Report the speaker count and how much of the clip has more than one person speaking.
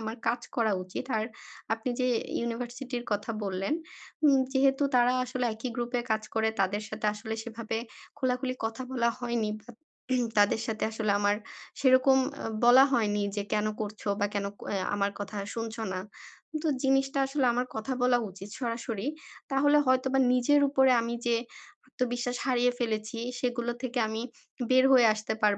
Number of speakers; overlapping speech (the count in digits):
1, no overlap